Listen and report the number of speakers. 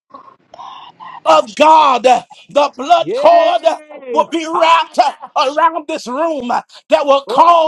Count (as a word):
three